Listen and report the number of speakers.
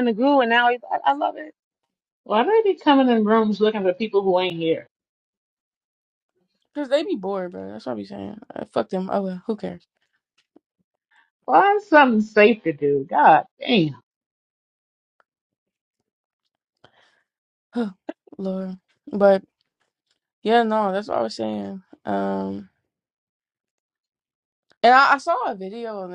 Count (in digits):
3